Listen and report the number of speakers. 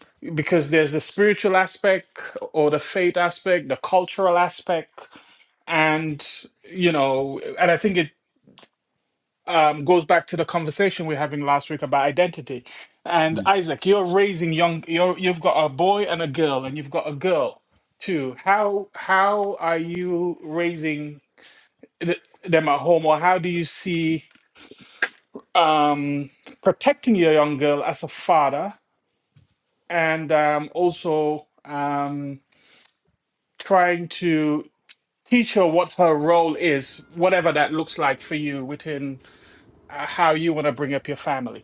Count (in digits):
1